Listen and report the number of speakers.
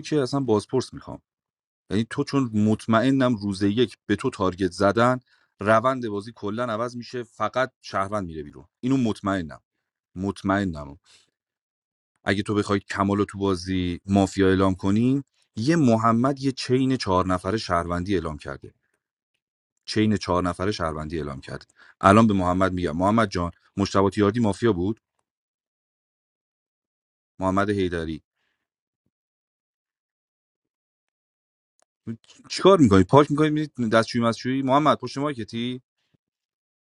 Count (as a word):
one